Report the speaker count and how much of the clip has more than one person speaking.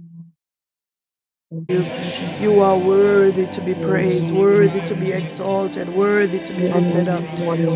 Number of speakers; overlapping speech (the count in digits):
2, about 21%